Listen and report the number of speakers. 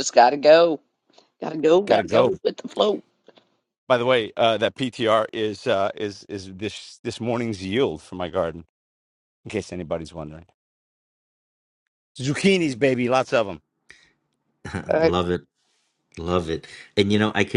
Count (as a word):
three